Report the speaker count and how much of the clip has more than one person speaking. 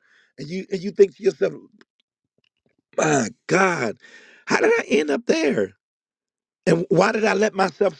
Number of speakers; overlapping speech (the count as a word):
one, no overlap